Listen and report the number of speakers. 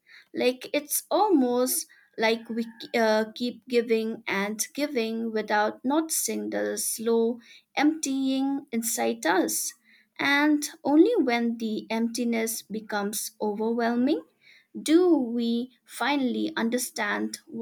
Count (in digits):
1